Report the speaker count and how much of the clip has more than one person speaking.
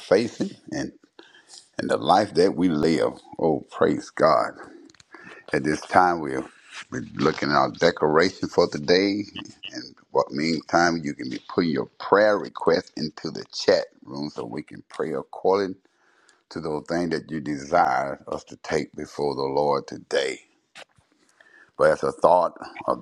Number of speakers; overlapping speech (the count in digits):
1, no overlap